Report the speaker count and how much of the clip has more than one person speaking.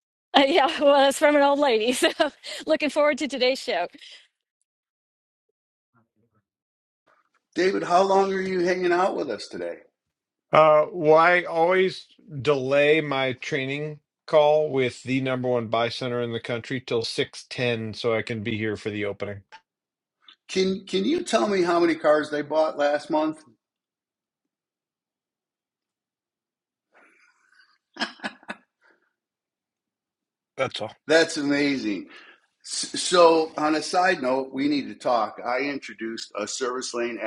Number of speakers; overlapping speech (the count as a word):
three, no overlap